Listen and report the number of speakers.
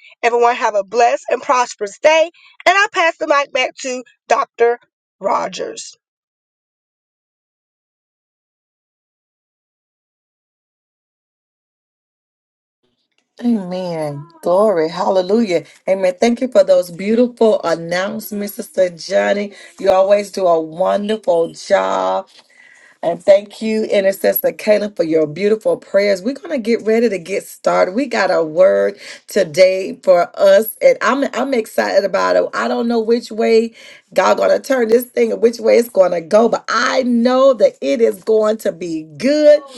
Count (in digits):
2